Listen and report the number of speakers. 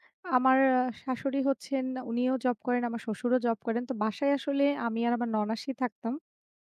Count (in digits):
1